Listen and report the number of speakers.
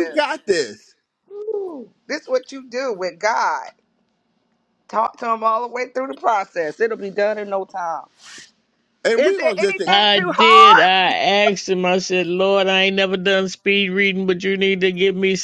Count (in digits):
3